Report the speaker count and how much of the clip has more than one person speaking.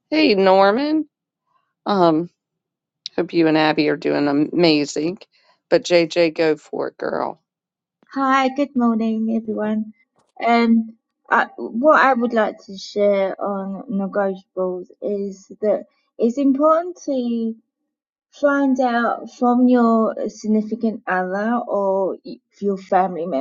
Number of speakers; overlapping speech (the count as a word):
two, no overlap